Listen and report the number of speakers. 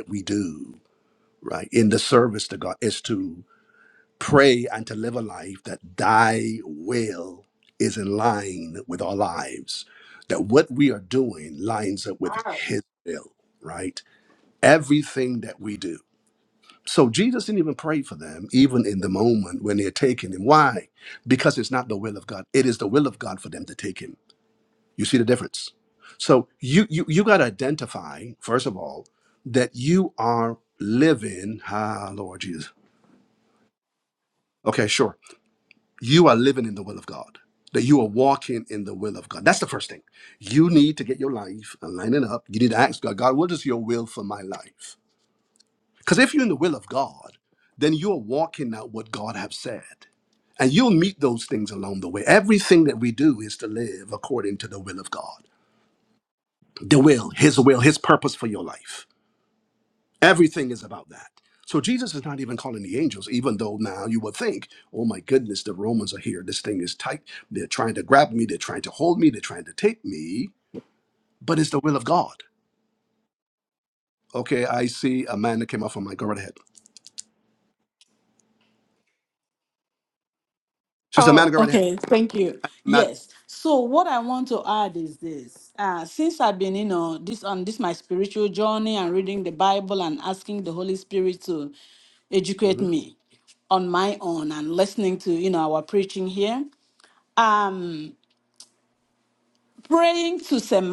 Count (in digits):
2